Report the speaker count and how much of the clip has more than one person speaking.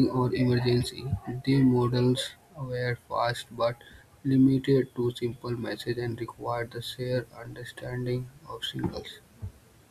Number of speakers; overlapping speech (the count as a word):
one, no overlap